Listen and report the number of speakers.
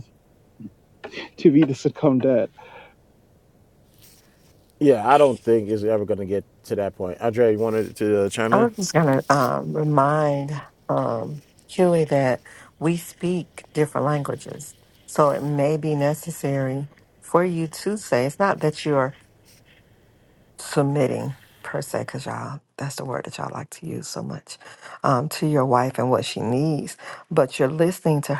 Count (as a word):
three